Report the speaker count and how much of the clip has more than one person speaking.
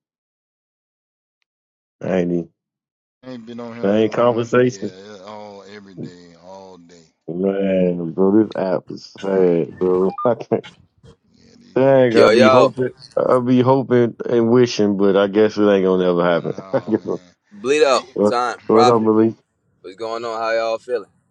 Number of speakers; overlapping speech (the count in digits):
3, about 15%